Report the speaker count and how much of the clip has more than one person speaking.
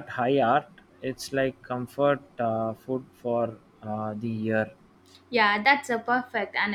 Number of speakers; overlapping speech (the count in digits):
2, no overlap